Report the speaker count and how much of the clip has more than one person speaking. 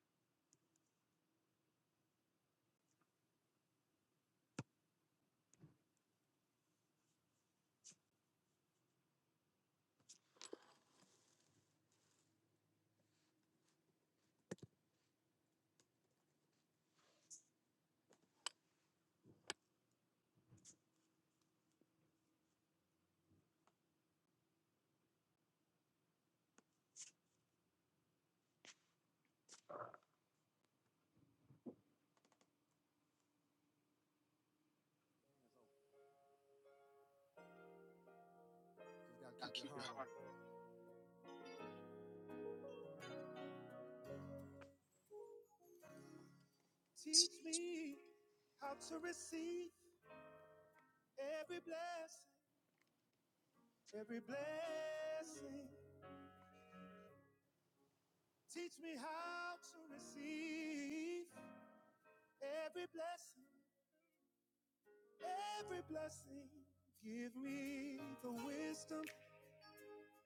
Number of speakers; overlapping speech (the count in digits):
1, no overlap